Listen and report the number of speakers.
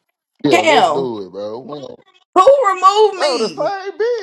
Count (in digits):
2